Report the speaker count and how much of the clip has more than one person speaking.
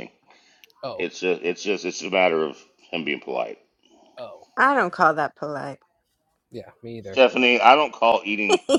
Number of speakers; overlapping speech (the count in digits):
3, about 1%